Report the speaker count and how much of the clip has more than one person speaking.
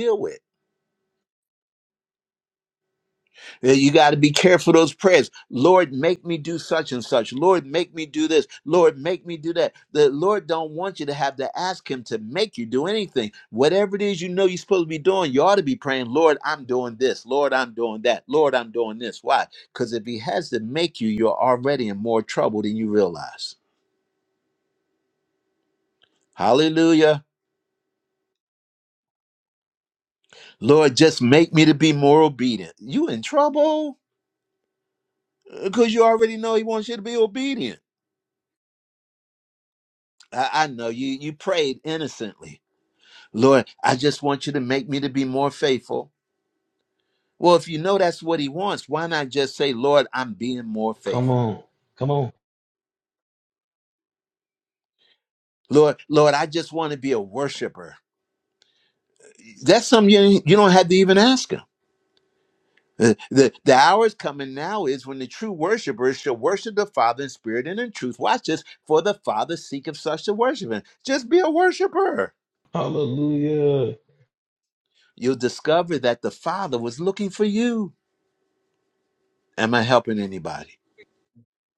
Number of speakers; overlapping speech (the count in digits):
2, under 1%